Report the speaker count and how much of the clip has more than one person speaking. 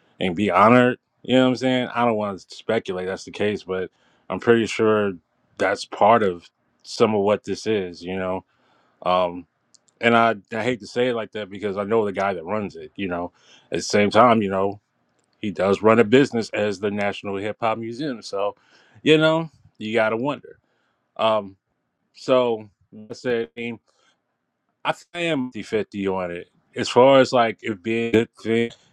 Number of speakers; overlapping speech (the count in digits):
1, no overlap